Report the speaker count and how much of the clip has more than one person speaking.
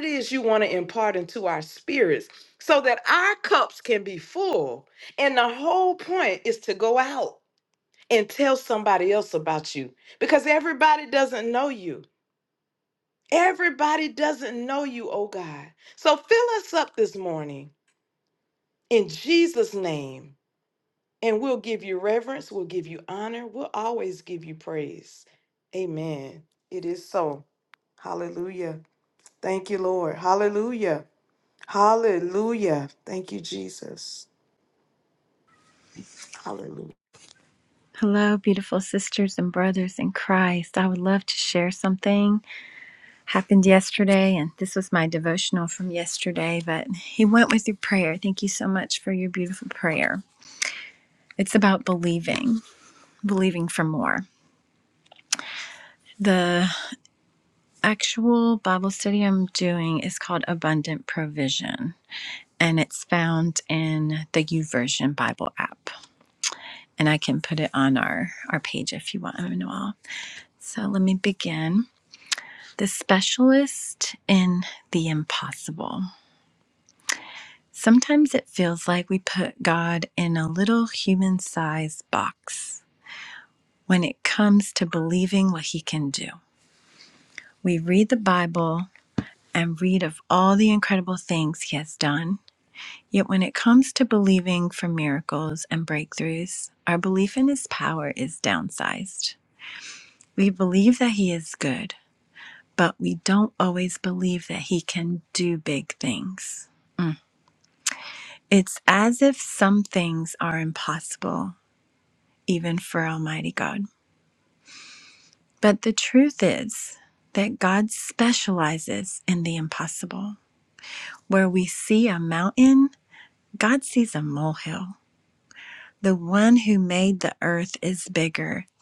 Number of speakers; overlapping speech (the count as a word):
two, no overlap